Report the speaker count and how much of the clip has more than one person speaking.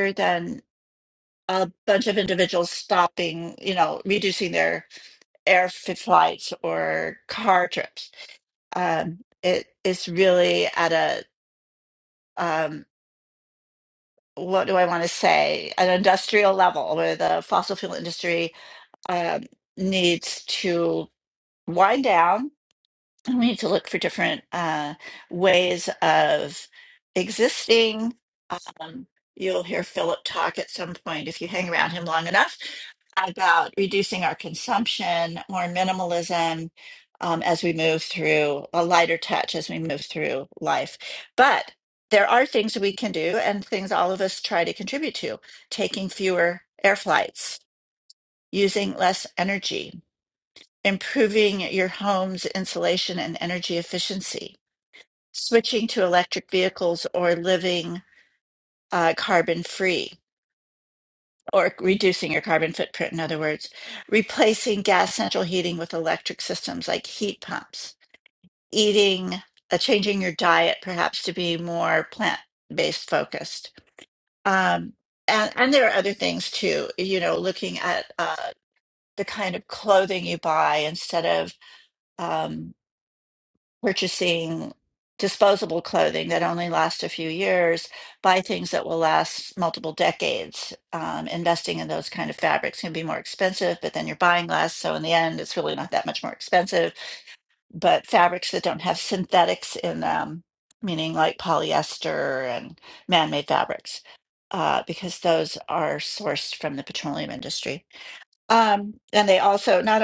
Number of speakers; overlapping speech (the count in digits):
1, no overlap